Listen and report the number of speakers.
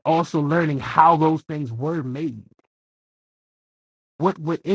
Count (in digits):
1